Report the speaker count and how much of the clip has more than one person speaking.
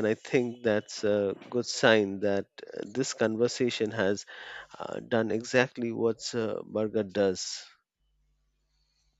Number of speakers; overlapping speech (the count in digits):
1, no overlap